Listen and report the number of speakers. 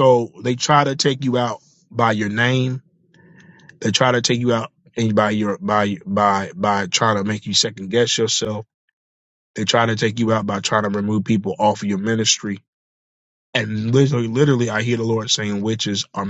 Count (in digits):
1